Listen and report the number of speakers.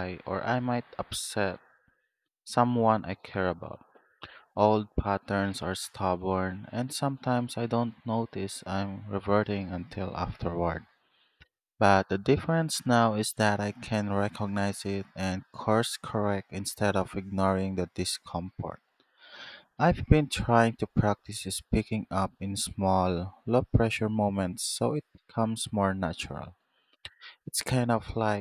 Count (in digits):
1